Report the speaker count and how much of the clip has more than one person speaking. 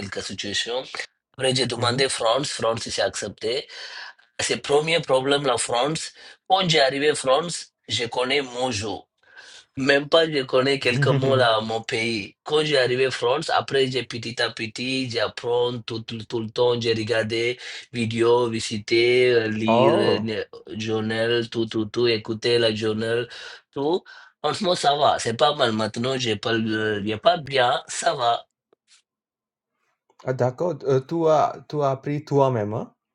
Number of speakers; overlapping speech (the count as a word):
two, about 3%